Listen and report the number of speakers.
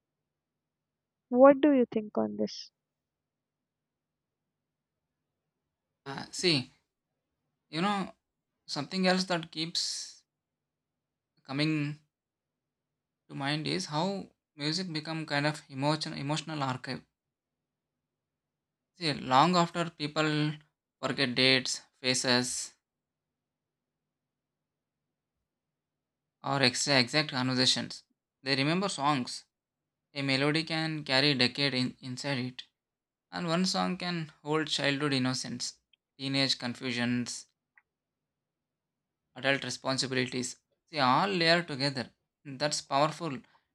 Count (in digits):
2